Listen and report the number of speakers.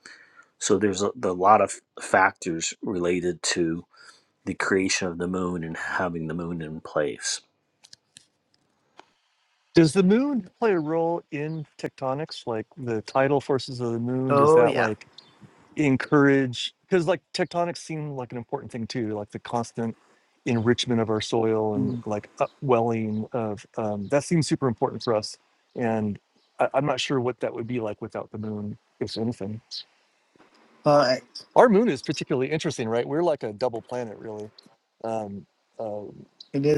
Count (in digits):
3